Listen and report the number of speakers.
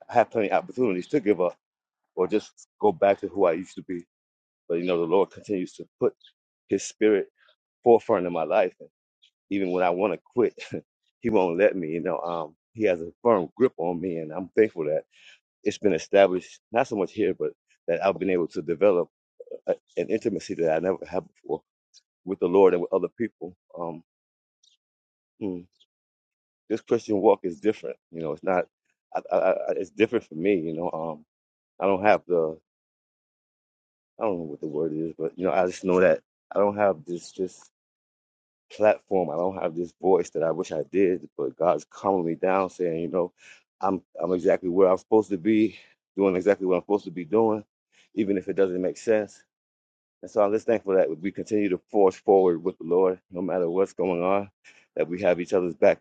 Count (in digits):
1